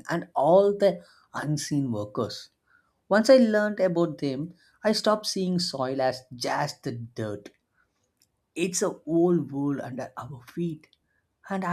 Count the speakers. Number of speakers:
1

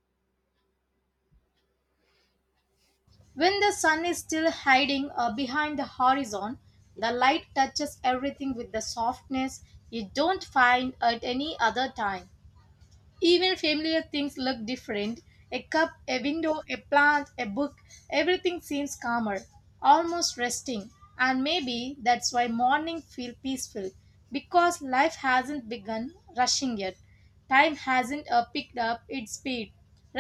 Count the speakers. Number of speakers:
1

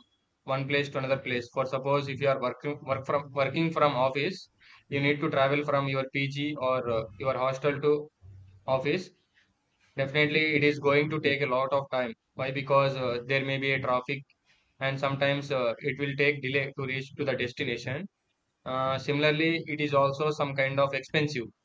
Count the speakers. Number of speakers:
1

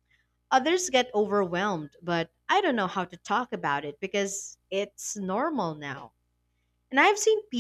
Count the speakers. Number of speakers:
1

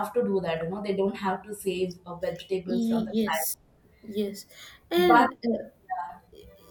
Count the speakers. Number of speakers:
2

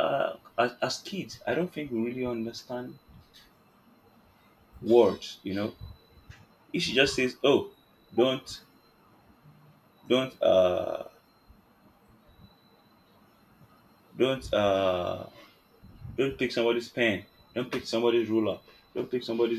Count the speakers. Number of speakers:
1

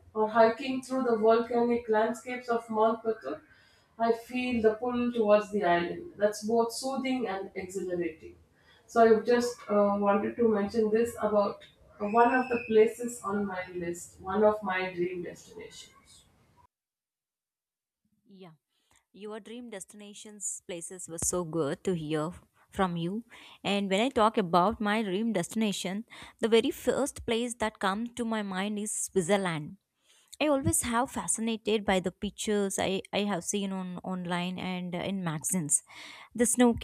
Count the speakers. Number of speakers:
2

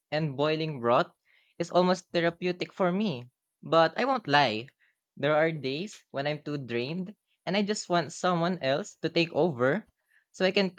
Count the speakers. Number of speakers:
1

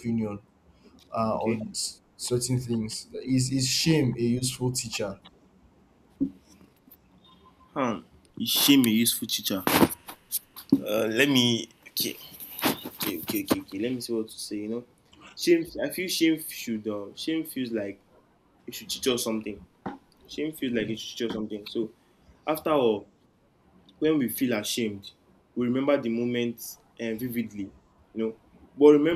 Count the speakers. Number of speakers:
2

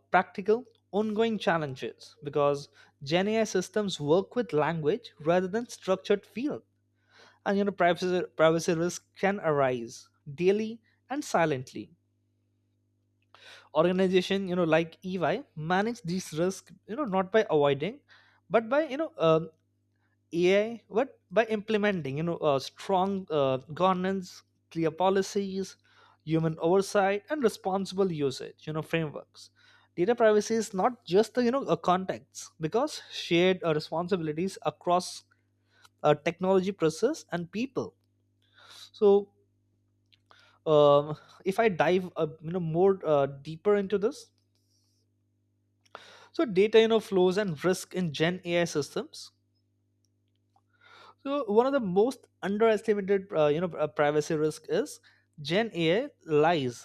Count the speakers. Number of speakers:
1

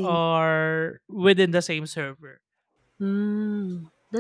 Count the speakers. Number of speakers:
2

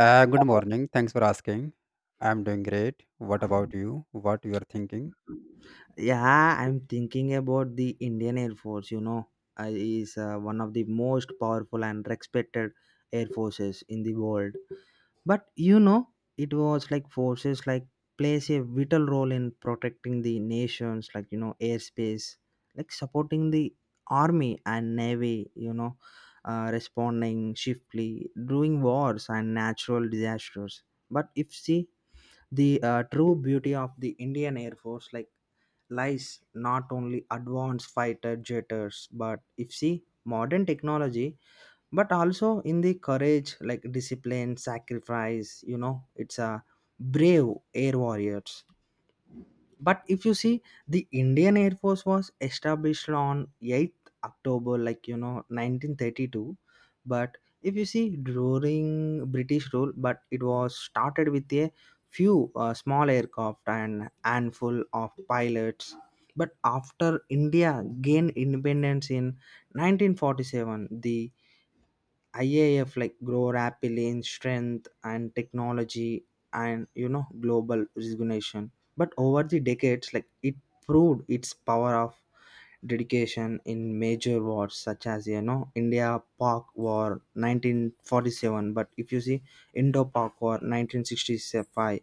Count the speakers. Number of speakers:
2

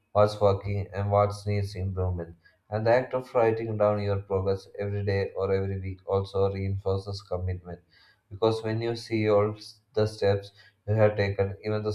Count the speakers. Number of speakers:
1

